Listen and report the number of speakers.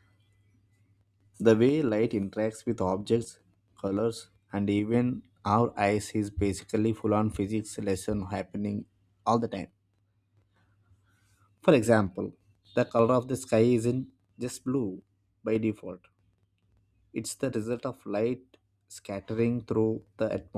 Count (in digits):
1